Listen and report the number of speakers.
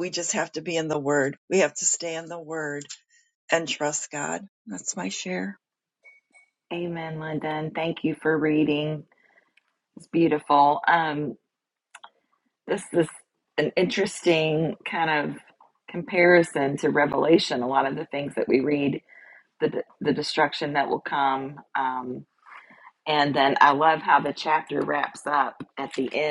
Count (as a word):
two